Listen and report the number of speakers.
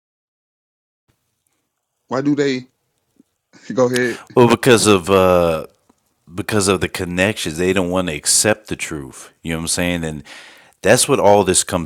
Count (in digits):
2